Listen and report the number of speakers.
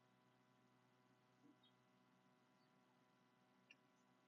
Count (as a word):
zero